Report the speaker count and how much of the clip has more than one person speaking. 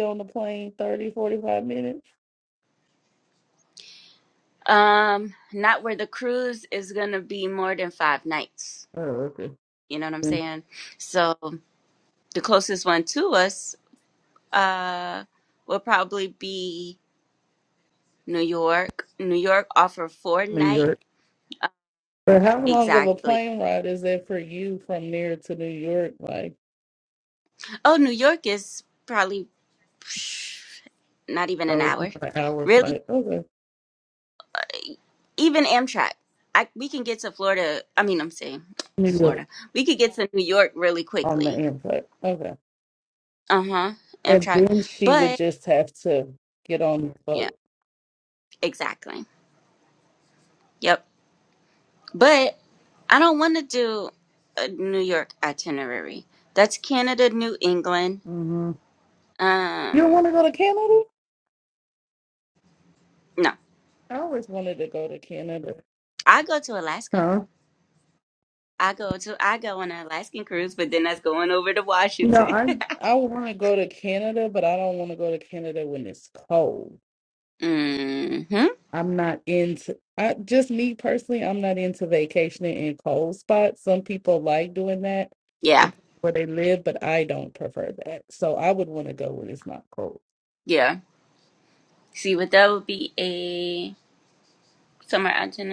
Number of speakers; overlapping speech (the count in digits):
2, about 4%